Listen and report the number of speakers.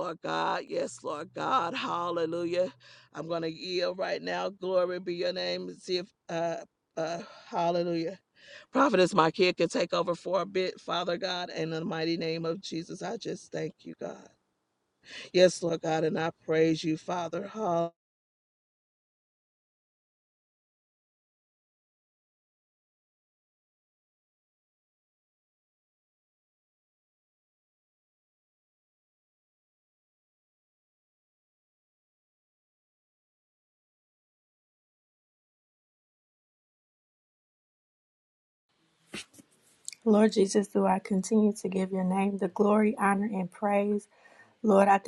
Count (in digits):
2